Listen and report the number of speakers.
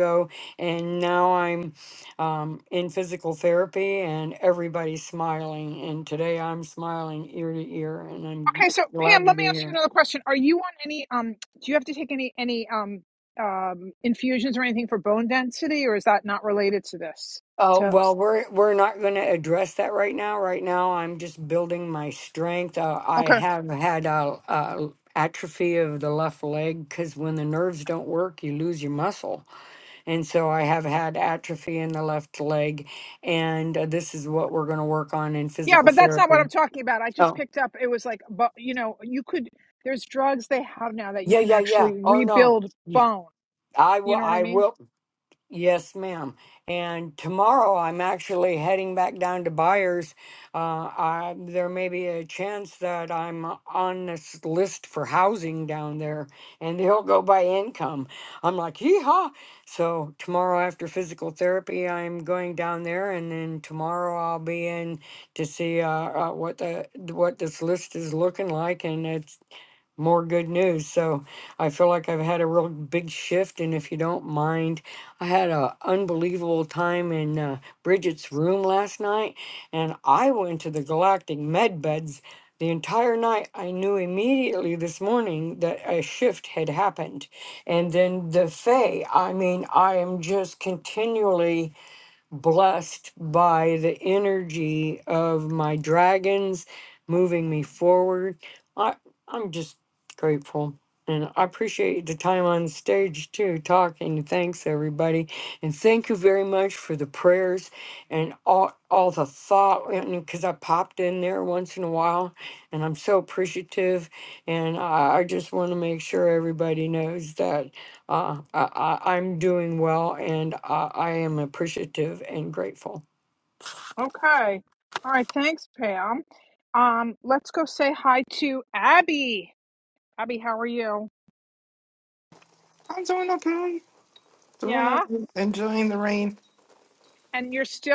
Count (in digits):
3